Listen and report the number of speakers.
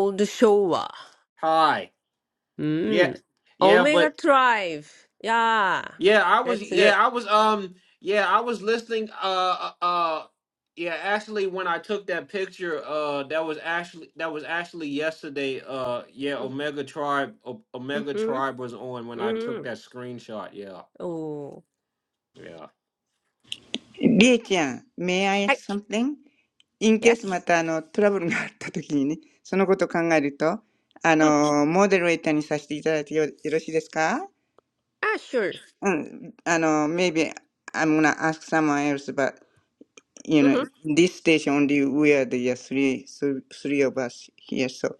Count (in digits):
3